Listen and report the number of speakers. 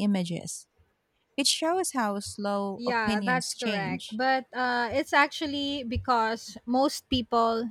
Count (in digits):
2